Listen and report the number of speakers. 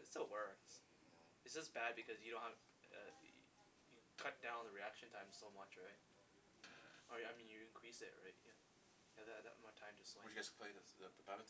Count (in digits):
2